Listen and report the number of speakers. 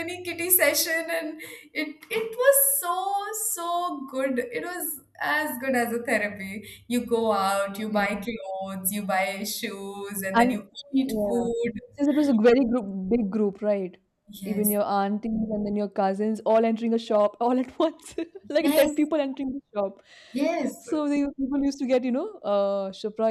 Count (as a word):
two